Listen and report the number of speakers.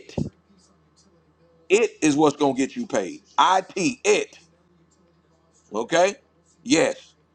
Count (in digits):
1